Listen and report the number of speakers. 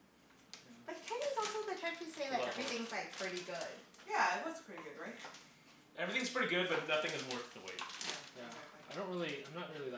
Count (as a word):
four